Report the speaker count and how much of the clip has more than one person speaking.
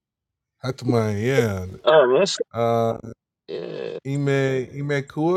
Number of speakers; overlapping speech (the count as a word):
two, no overlap